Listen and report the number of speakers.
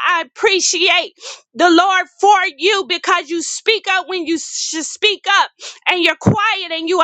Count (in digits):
1